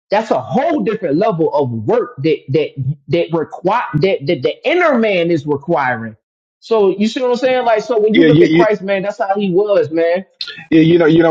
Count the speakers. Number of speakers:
2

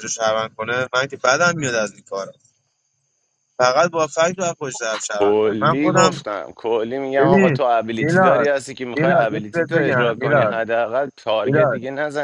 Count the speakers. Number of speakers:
2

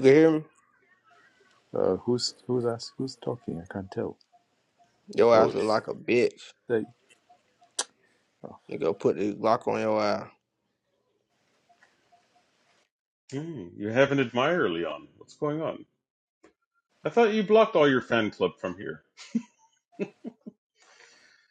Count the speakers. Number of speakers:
3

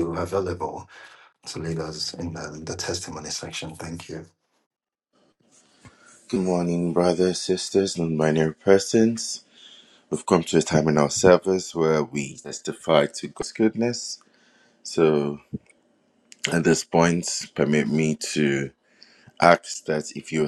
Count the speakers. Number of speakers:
2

